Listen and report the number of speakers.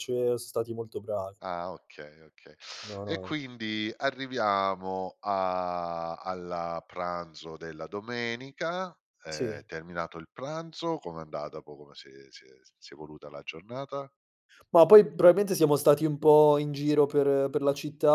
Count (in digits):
2